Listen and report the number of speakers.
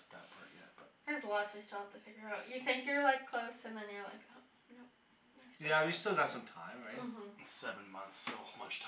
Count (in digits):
3